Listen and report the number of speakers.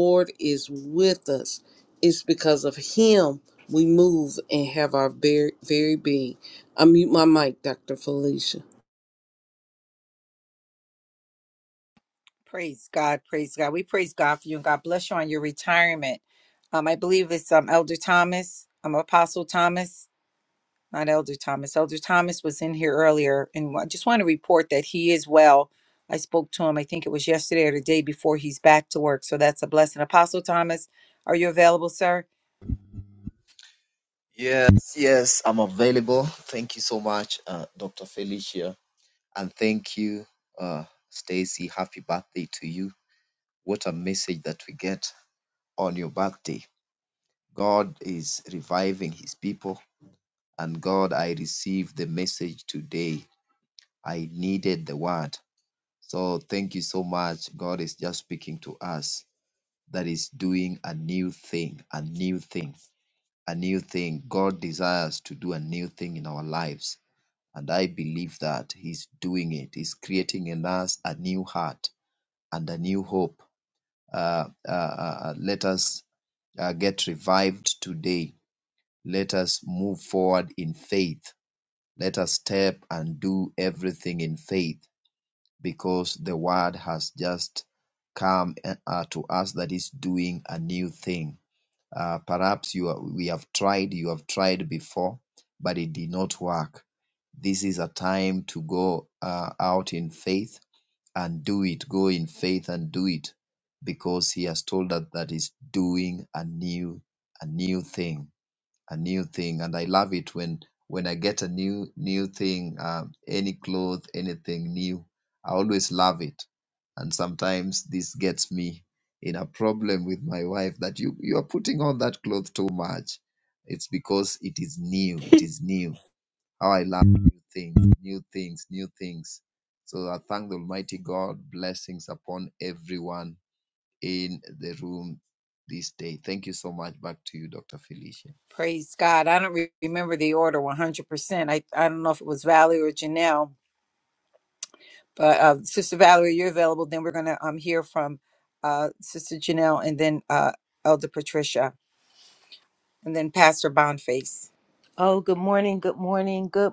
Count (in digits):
4